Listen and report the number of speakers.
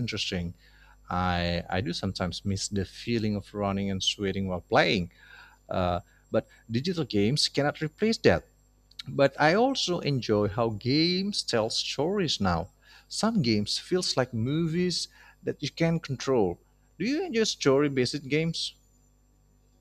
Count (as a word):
one